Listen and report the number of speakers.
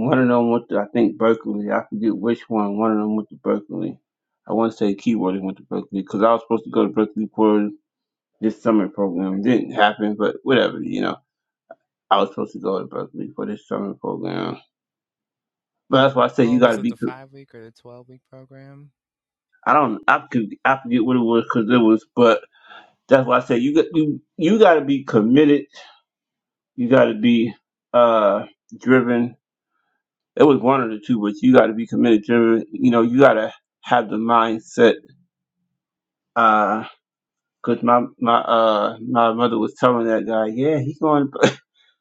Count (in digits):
2